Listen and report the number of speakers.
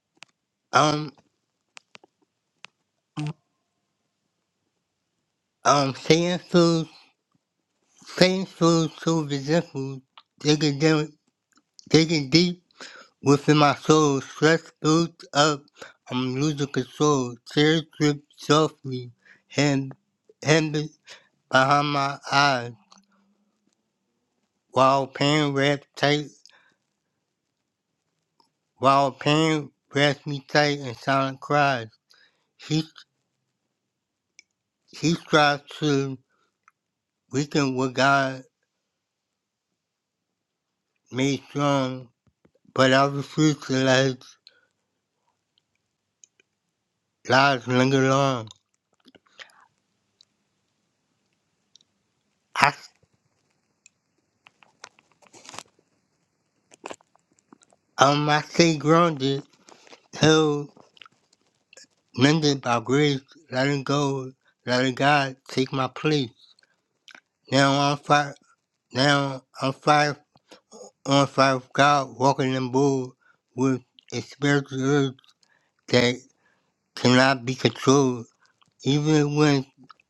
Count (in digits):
1